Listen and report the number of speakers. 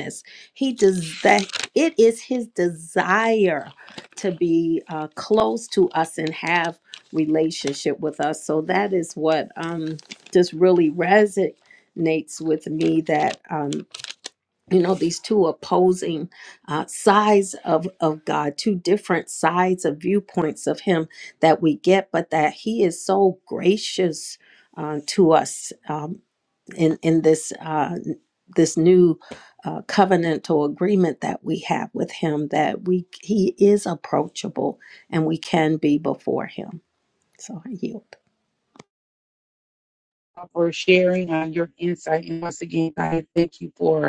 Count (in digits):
2